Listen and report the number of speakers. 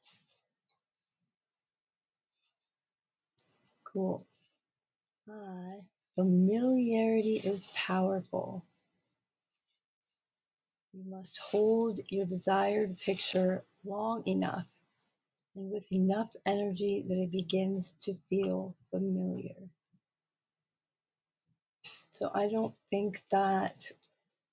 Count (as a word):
one